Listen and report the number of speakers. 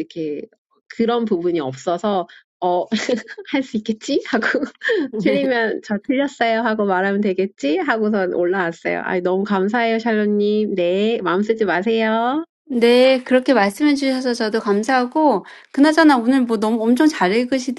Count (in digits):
2